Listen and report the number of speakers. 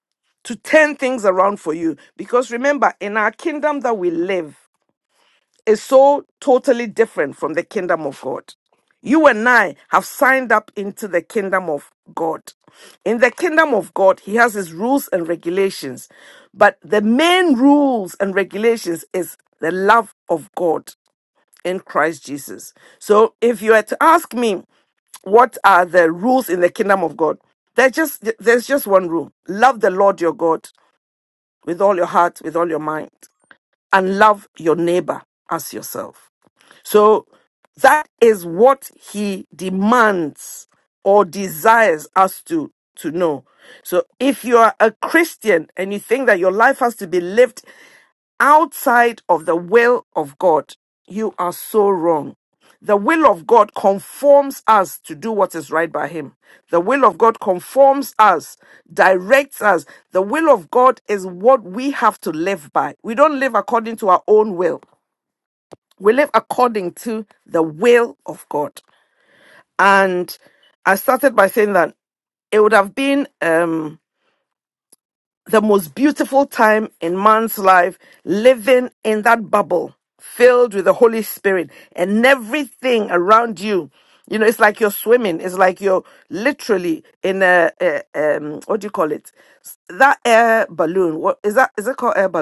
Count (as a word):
one